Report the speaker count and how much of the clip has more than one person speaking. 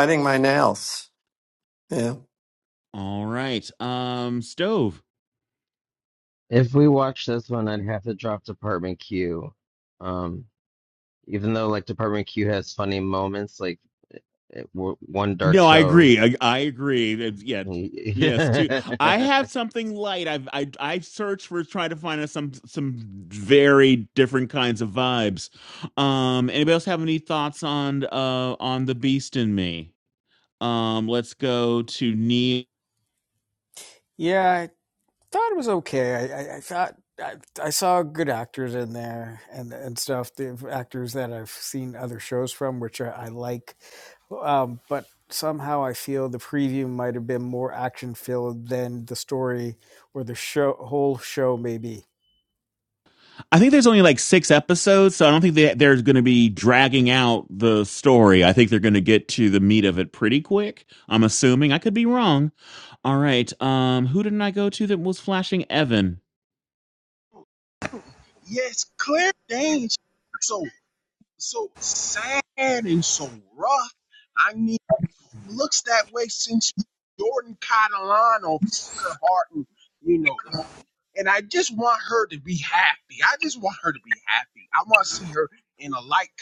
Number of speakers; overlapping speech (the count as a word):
five, about 1%